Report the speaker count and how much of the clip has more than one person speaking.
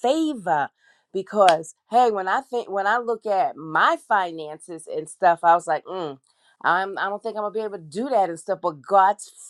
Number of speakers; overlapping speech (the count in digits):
1, no overlap